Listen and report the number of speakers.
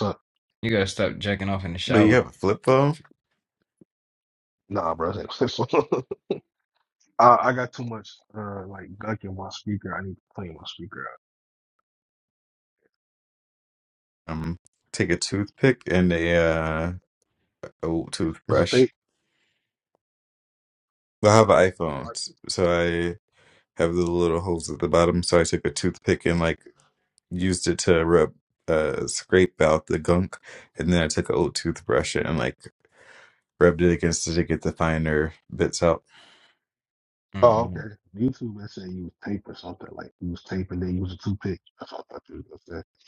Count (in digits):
3